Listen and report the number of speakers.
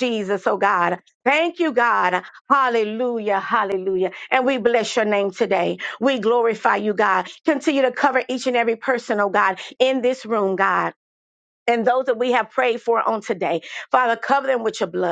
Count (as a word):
one